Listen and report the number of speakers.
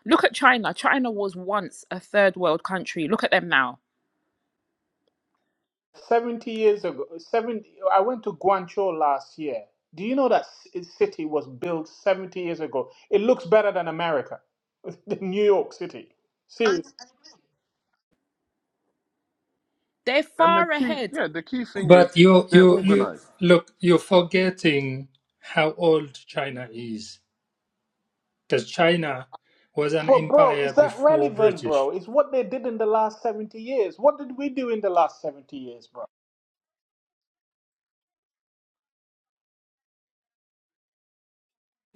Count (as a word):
four